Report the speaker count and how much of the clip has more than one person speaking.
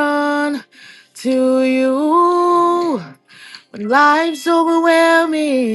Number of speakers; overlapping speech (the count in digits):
1, no overlap